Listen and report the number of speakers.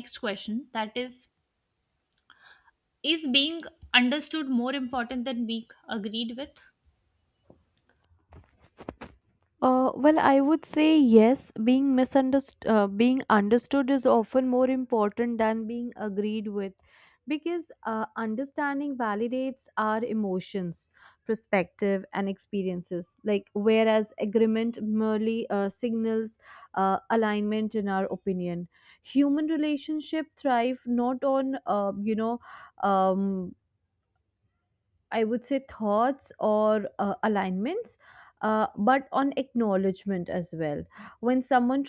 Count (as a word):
two